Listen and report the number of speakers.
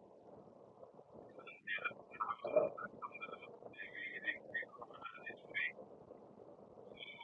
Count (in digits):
0